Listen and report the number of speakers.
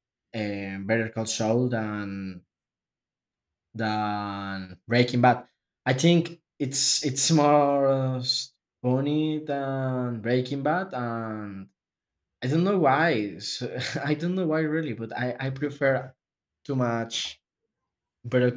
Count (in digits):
1